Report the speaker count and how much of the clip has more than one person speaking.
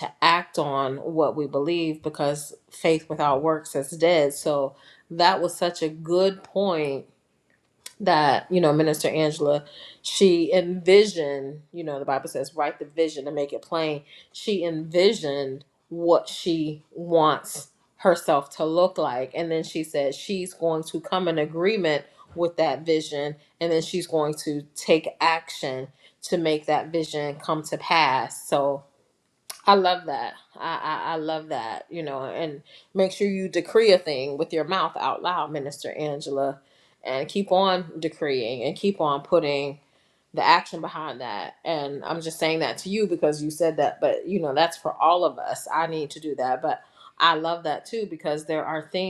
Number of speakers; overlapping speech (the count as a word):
one, no overlap